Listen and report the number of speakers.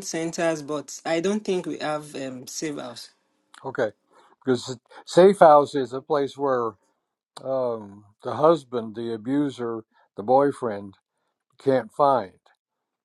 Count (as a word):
two